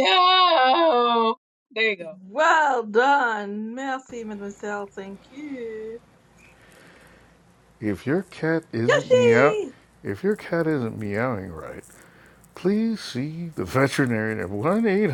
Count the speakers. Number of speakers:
three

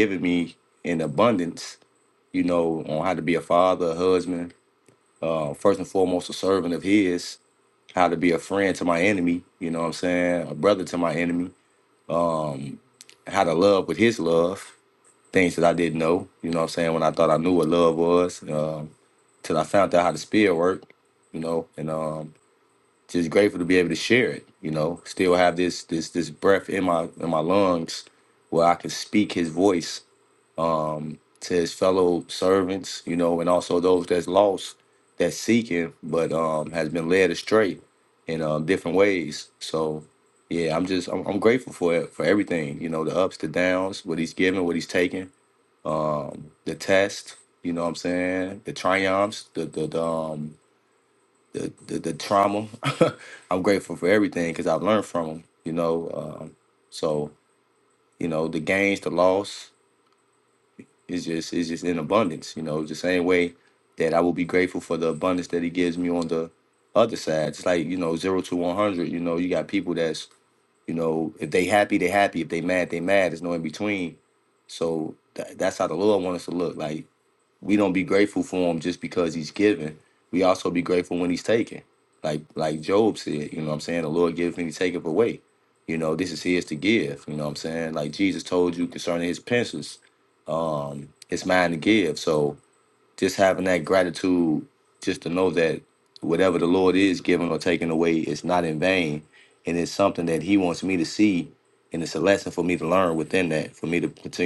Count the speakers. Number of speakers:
one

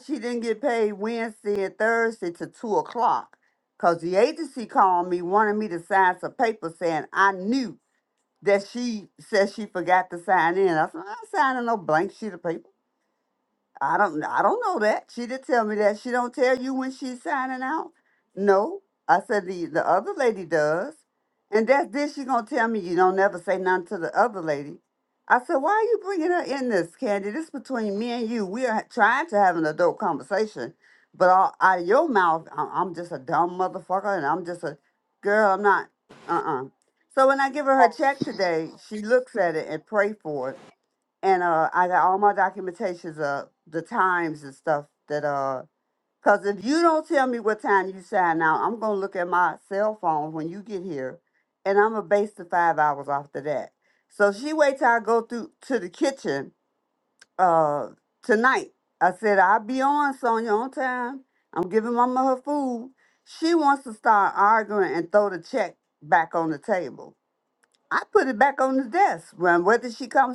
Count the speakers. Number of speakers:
one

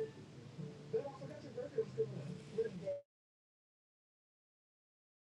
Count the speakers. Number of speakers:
zero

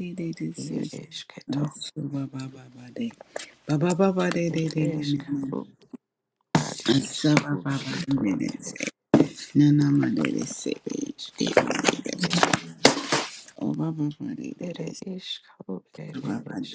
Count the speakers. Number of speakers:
two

